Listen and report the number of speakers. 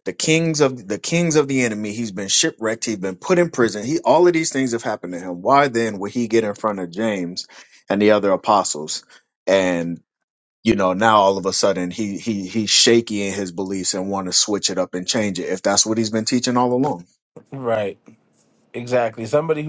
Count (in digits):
2